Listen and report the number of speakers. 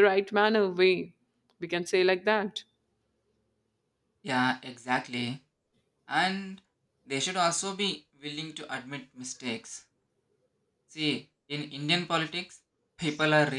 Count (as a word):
two